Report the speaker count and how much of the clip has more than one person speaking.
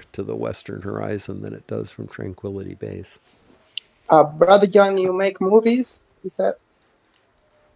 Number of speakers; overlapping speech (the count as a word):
two, no overlap